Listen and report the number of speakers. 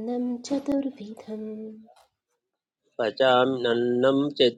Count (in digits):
2